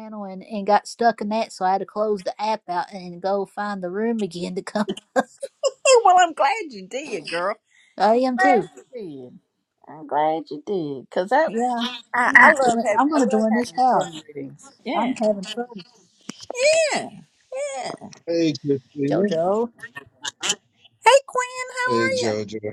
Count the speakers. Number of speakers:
3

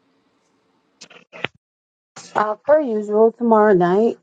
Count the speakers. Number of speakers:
1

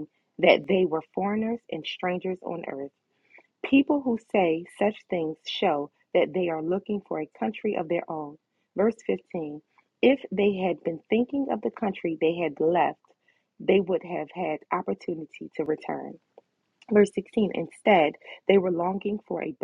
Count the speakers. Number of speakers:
1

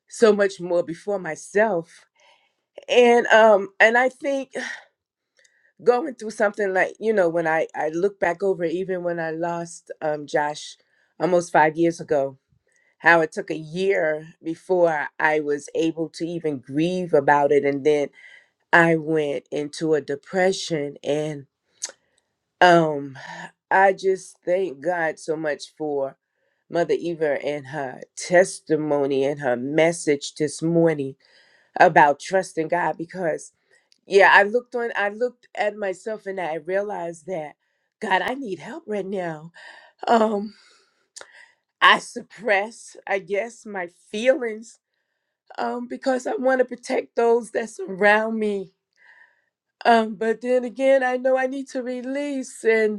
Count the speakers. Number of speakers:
1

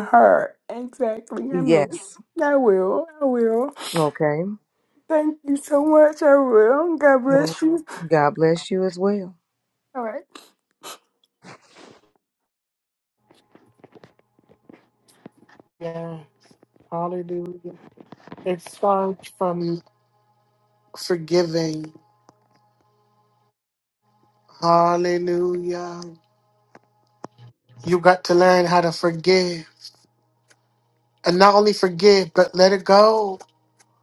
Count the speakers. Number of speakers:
3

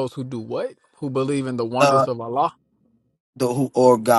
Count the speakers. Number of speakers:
2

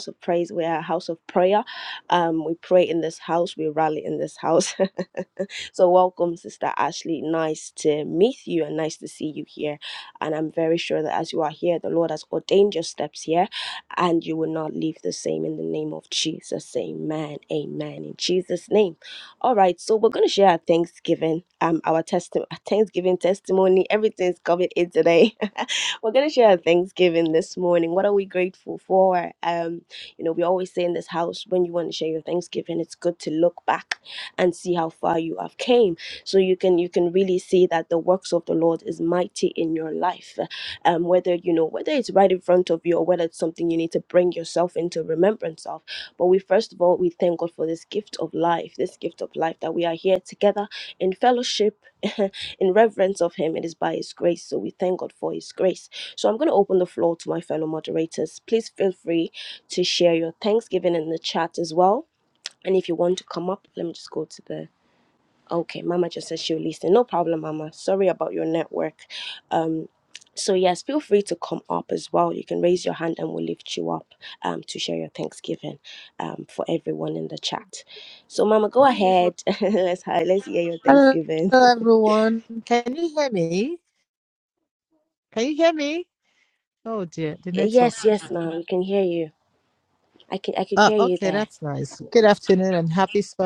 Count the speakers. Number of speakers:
2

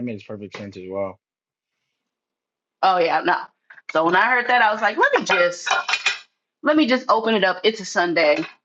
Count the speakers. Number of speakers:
2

